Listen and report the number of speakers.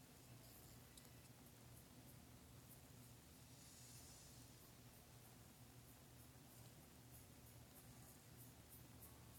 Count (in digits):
0